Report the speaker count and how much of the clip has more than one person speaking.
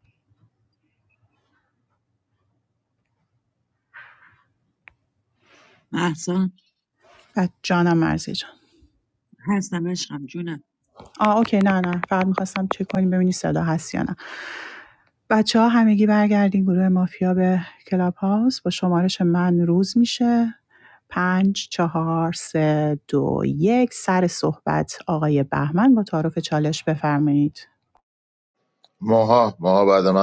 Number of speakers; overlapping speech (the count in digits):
3, no overlap